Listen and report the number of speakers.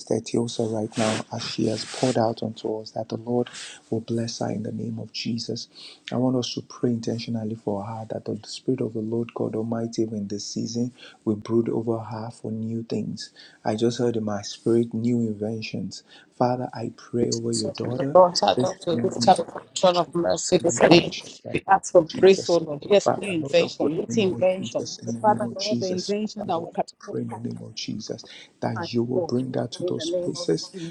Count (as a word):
two